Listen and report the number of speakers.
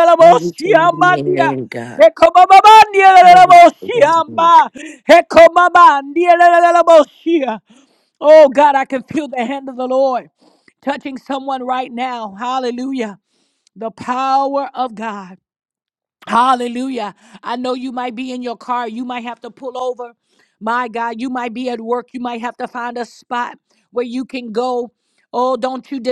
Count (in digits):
2